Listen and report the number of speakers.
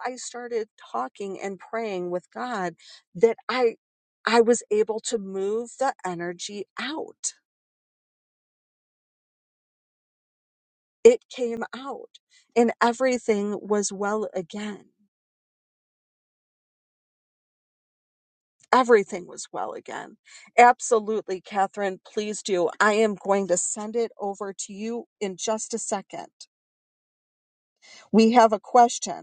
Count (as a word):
one